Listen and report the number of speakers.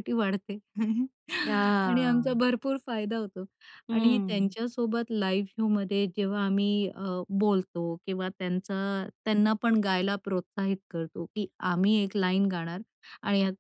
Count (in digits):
2